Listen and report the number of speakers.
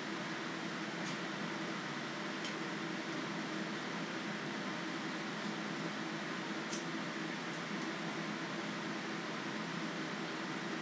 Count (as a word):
zero